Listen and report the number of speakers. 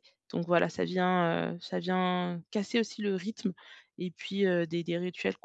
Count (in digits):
1